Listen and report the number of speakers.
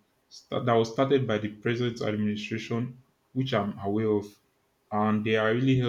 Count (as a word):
one